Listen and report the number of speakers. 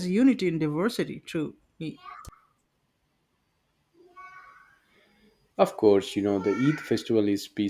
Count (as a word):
two